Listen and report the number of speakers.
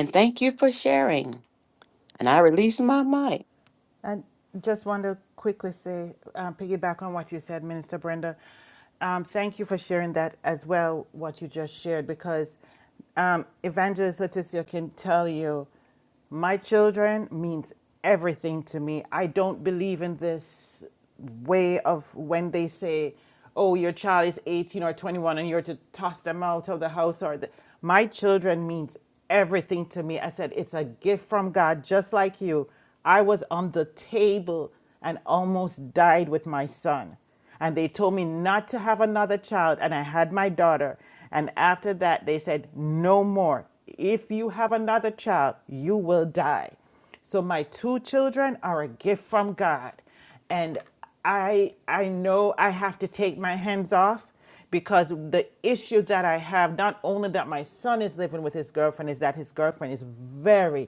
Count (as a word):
two